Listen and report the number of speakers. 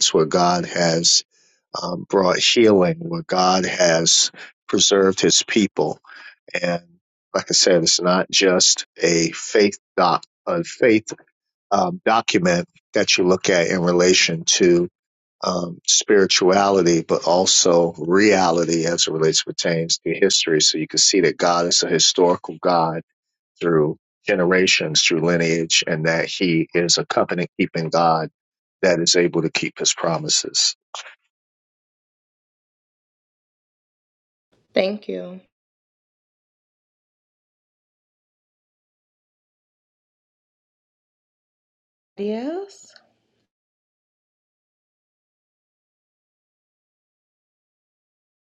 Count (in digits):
2